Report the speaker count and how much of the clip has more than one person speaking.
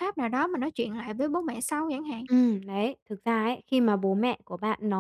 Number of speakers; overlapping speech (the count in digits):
2, no overlap